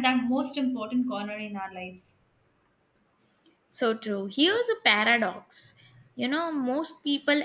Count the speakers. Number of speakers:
two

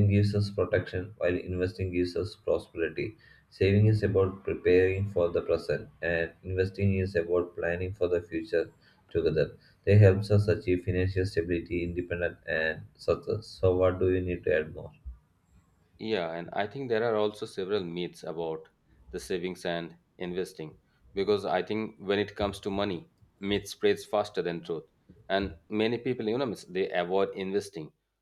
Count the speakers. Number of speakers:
two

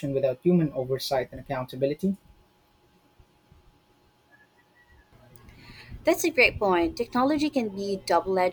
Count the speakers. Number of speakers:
two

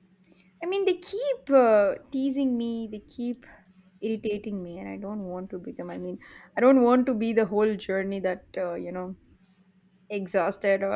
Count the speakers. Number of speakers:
one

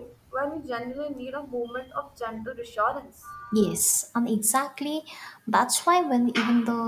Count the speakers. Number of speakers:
two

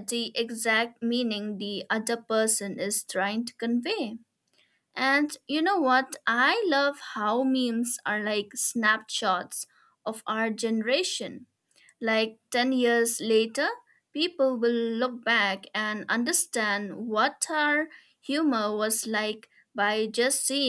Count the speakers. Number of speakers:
one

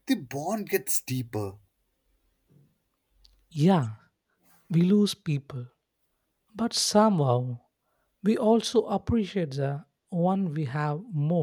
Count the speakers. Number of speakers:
two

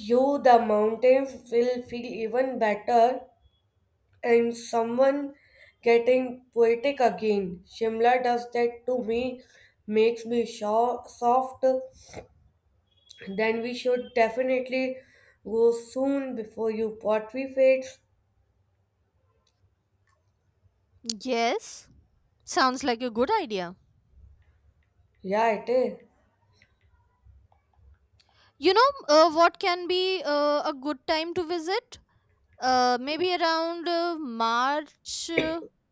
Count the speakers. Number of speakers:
two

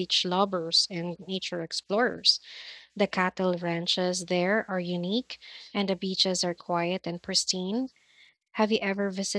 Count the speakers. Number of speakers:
one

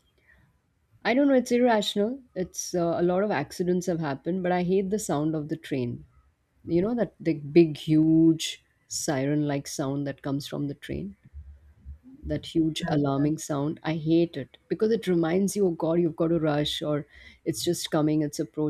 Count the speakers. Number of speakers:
one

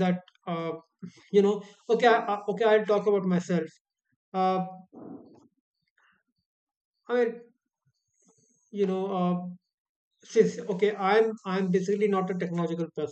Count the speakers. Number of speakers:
one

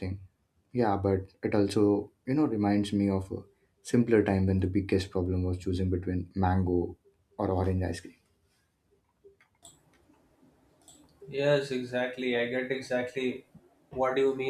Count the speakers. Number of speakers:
two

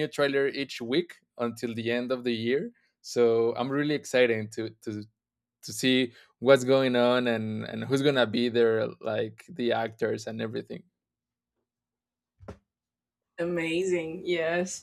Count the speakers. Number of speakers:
two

